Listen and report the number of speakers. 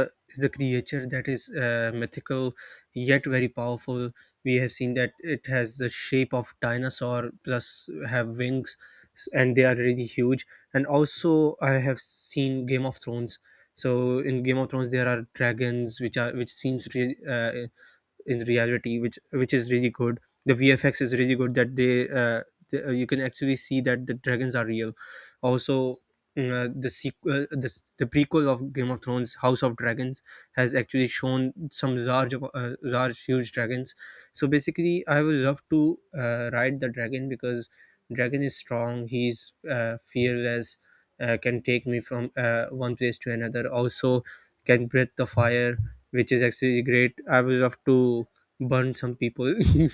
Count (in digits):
1